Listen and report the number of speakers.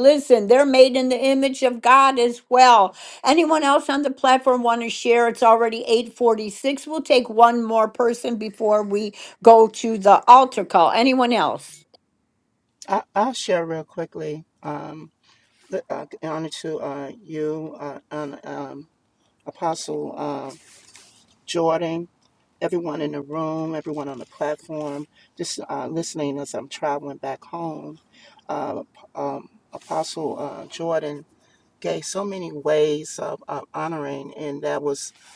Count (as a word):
two